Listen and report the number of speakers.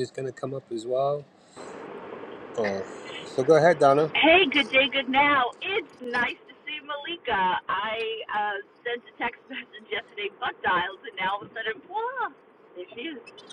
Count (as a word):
two